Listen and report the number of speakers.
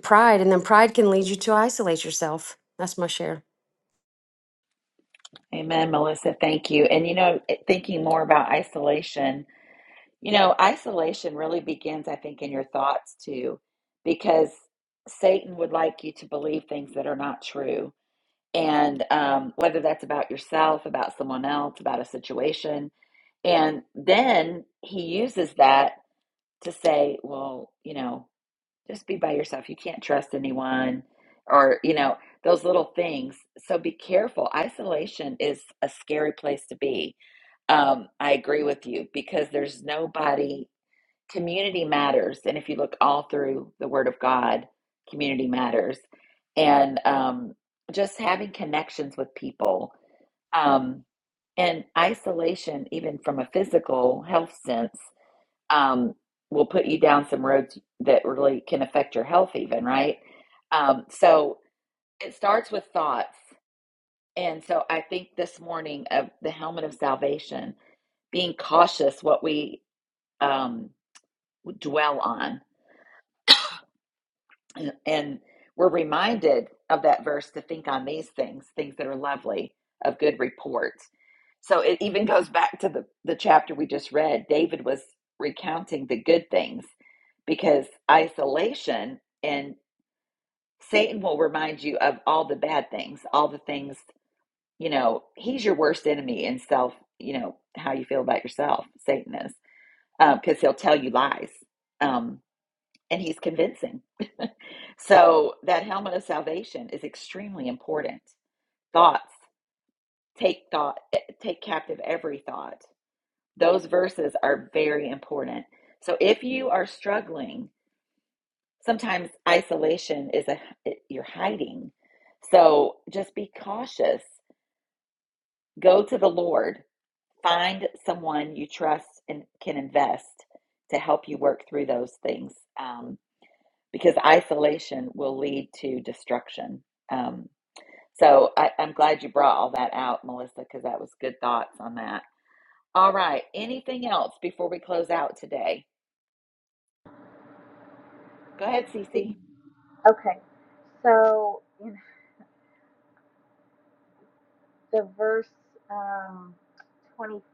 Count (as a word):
three